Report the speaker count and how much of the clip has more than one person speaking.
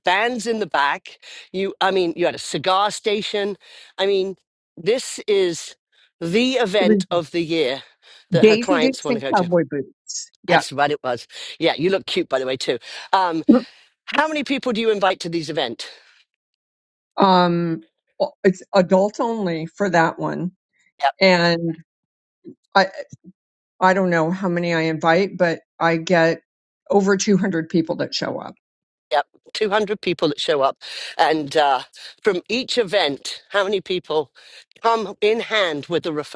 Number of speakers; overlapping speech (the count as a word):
two, about 4%